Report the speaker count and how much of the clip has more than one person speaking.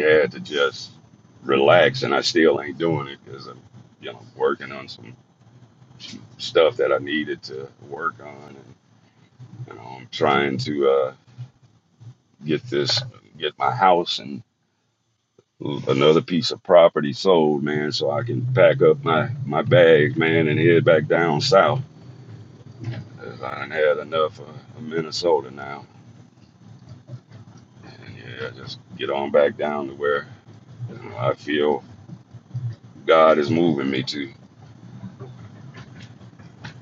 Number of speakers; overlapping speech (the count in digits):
1, no overlap